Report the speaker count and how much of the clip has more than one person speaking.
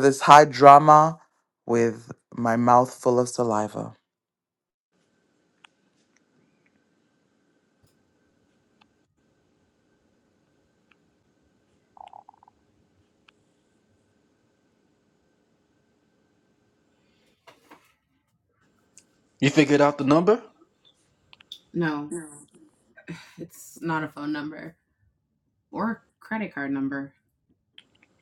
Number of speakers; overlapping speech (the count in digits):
3, no overlap